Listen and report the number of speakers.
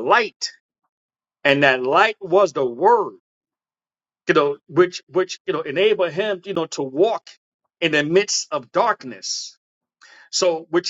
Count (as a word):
one